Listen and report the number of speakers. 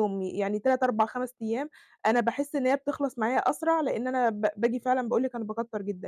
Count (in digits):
1